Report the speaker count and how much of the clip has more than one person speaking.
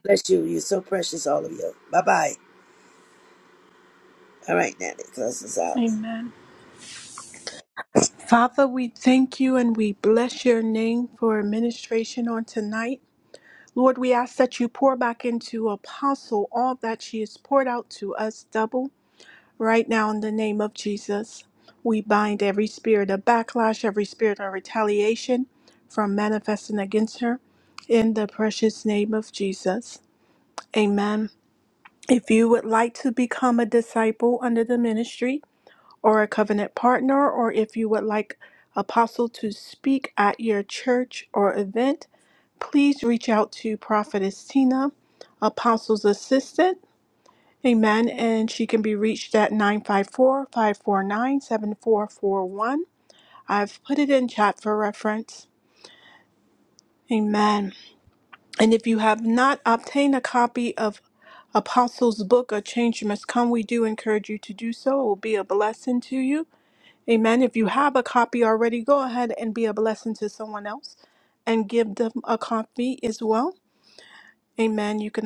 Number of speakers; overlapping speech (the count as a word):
two, under 1%